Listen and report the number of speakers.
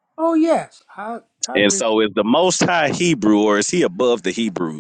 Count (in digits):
2